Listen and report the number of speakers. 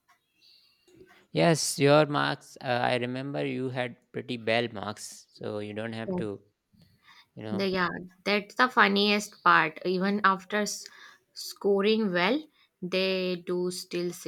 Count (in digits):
2